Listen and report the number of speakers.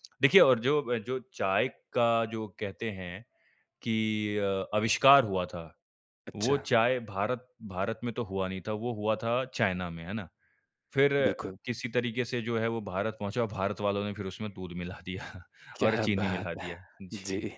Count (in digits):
2